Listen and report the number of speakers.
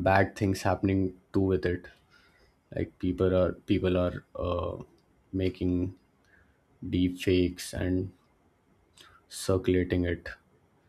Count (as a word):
one